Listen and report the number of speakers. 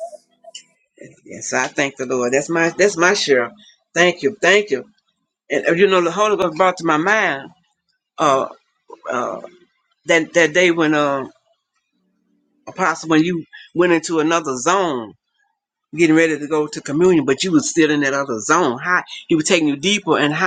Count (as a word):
one